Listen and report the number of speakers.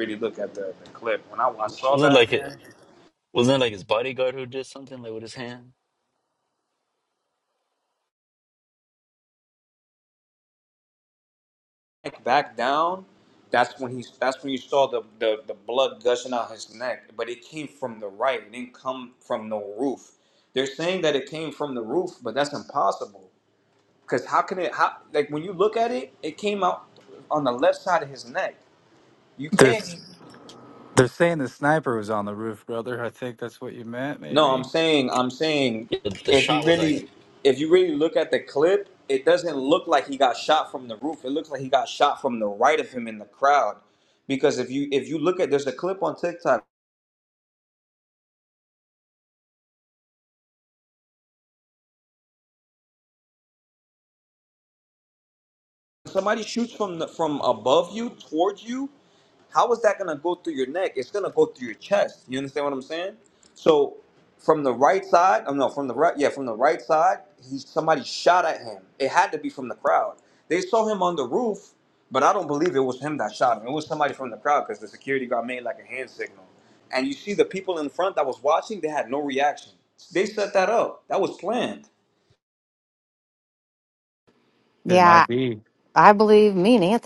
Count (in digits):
4